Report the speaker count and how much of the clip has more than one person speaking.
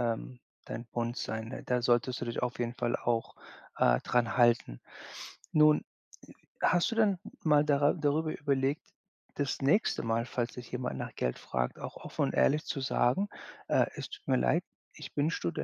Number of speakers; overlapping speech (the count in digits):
1, no overlap